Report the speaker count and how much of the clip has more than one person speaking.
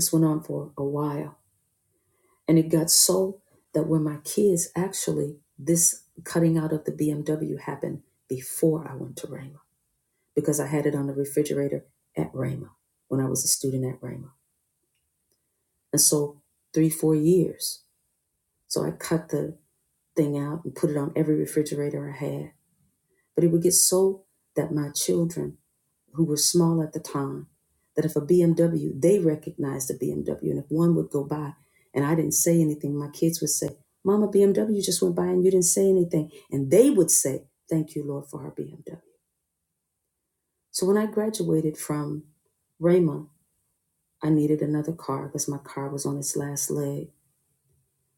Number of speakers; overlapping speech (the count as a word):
one, no overlap